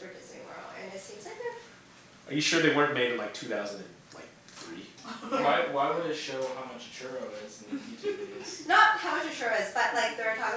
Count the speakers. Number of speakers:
three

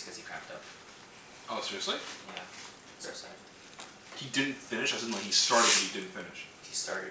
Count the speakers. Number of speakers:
two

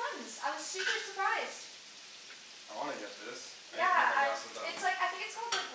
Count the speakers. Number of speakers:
two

